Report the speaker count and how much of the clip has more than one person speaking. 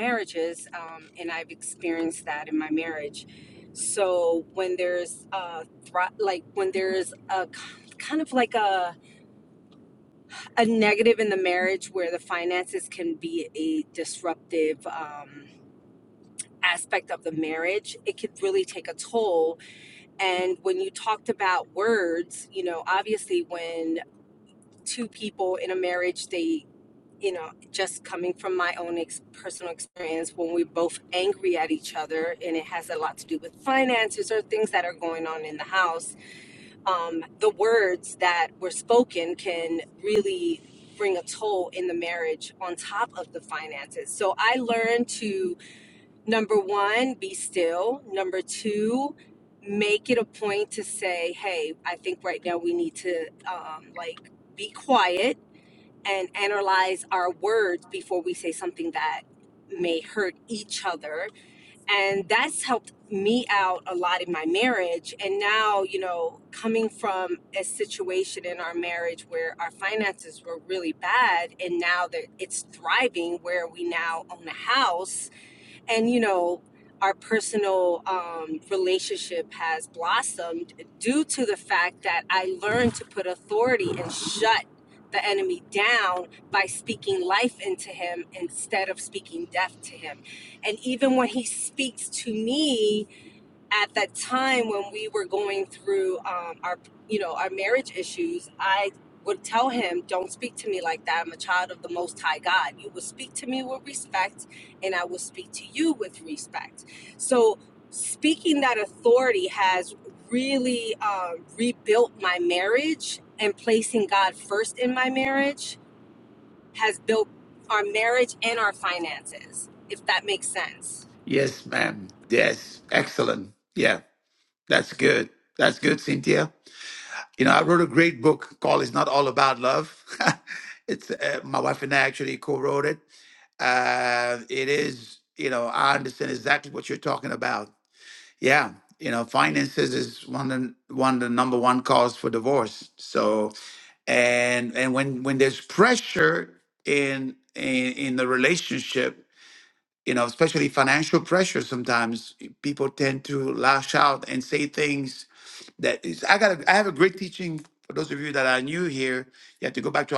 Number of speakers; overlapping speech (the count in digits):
2, no overlap